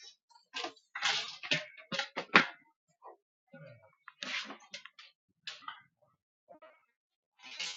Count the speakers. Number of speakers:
zero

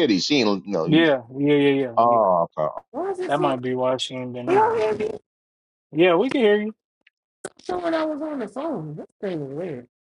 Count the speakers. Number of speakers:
three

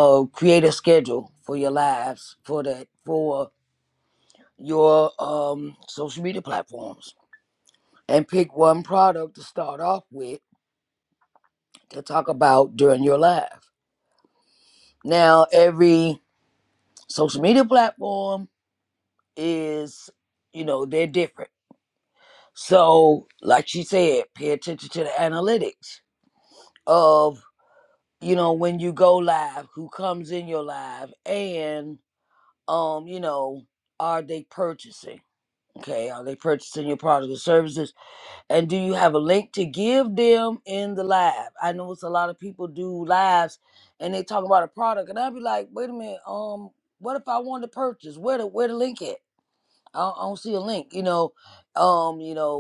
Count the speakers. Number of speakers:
one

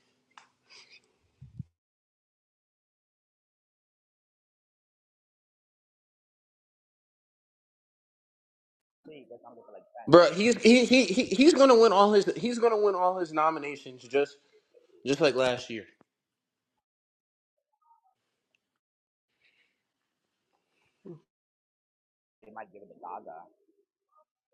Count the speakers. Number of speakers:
two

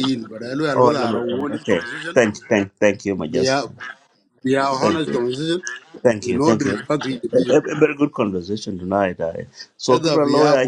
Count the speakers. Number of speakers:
two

